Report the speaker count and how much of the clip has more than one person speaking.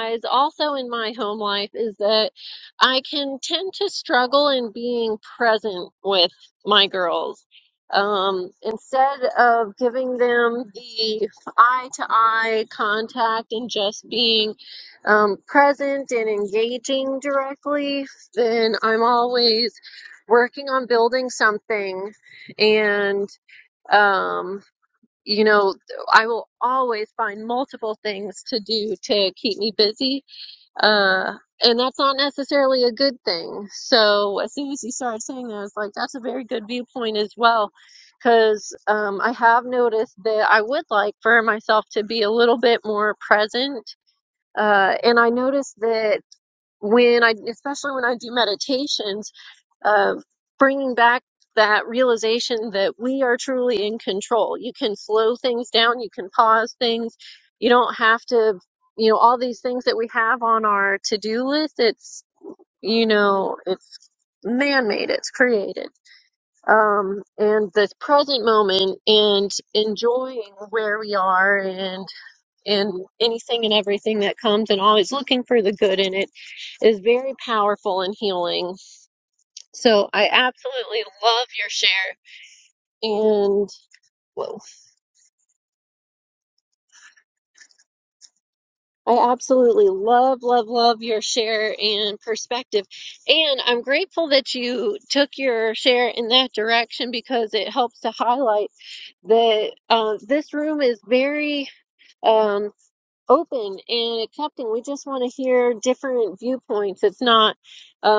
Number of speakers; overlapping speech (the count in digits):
1, no overlap